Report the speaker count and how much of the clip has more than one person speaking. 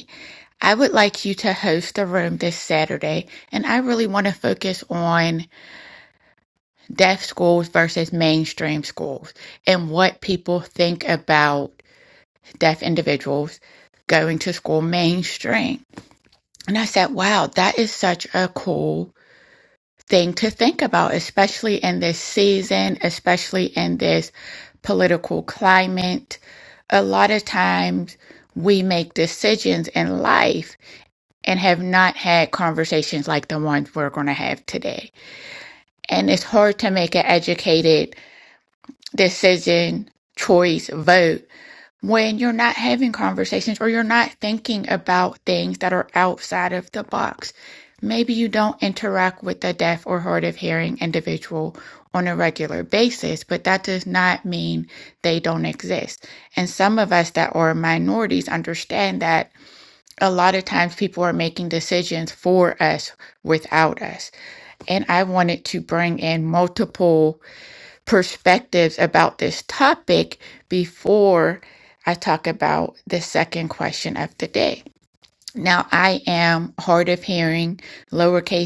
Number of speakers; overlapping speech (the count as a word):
one, no overlap